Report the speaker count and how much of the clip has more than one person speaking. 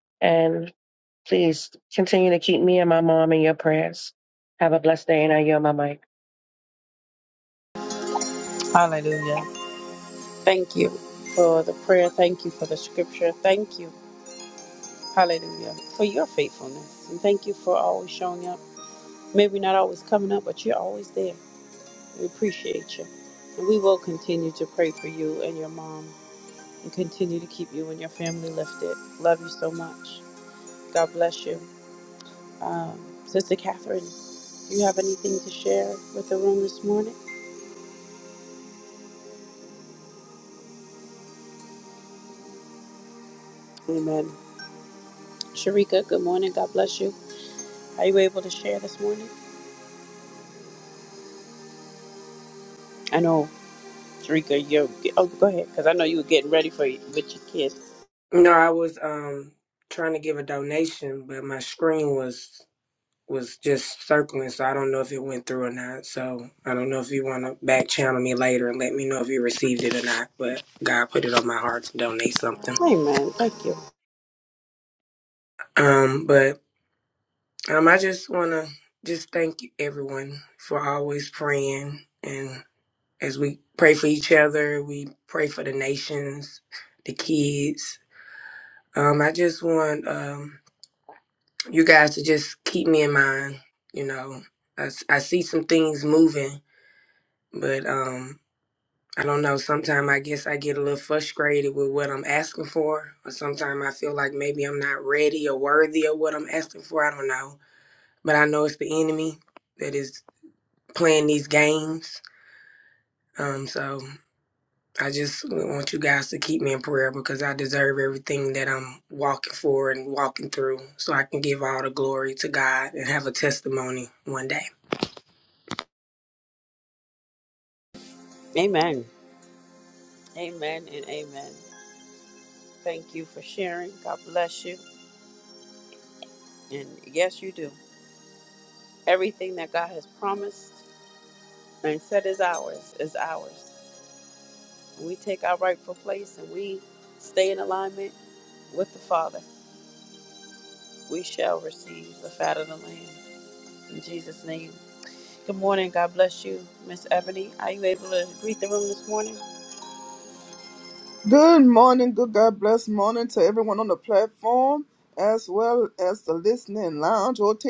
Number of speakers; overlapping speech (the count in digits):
4, under 1%